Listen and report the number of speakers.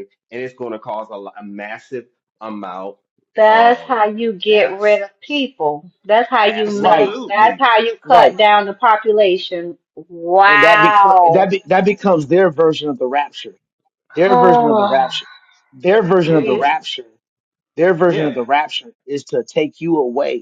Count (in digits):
3